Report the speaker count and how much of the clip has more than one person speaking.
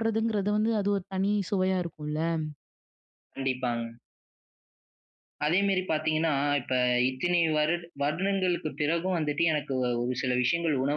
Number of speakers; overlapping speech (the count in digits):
2, no overlap